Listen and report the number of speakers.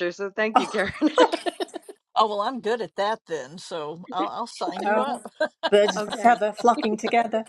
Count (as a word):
three